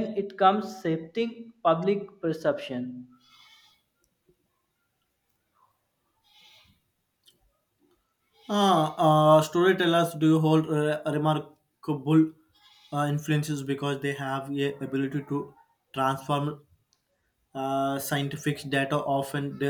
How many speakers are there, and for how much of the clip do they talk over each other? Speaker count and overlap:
2, no overlap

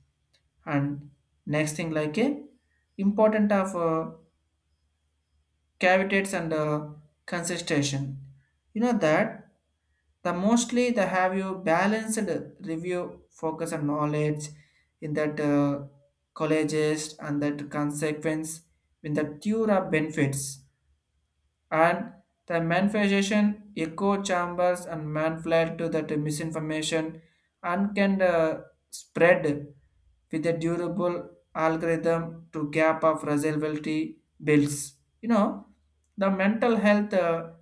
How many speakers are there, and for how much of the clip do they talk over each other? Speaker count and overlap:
1, no overlap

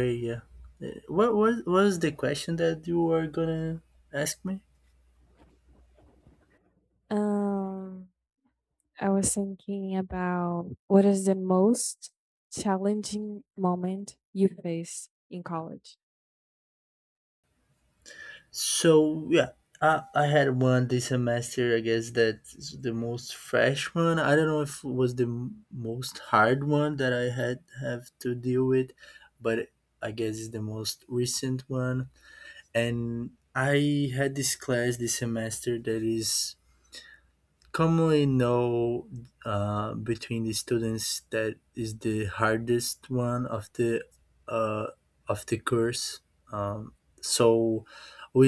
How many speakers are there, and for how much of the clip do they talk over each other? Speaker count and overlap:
2, no overlap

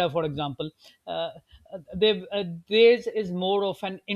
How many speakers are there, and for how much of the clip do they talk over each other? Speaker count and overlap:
1, no overlap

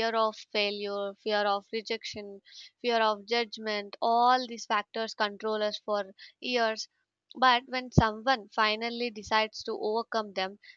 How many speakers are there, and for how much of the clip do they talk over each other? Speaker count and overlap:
1, no overlap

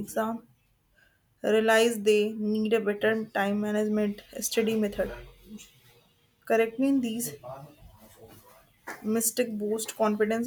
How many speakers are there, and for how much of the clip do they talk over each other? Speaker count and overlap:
1, no overlap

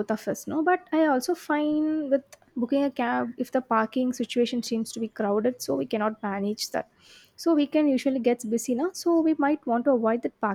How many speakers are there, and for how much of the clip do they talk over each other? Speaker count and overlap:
1, no overlap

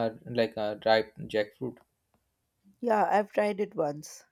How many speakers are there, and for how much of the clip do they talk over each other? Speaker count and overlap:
2, no overlap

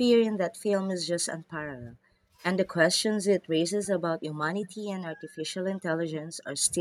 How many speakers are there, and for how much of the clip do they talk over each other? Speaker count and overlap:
1, no overlap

